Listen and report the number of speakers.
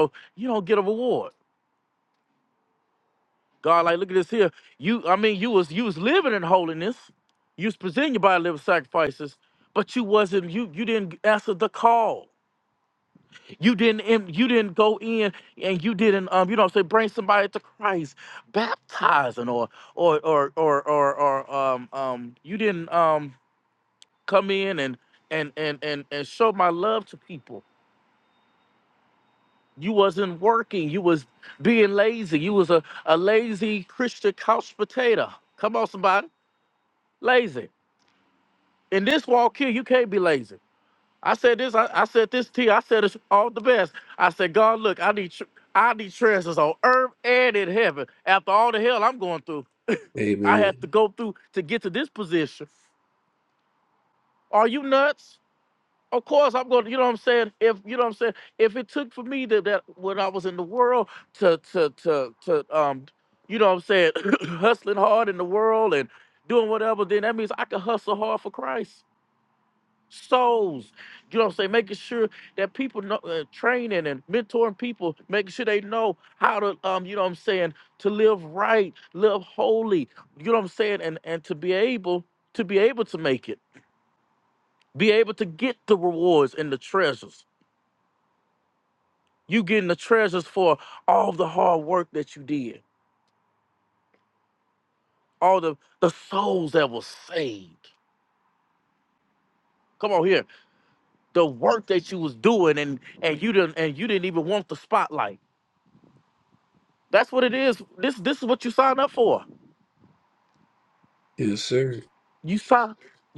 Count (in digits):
2